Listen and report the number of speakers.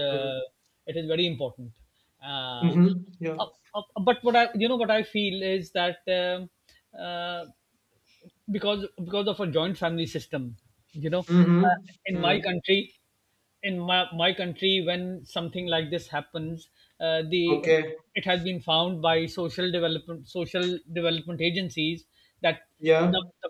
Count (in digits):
2